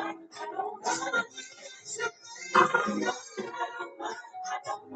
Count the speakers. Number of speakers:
0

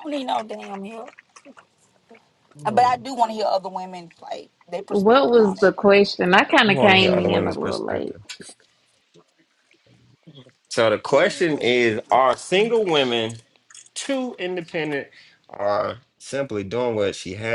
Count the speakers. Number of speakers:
3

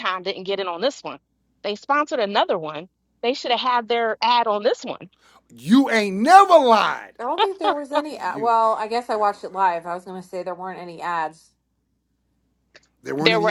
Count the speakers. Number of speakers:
3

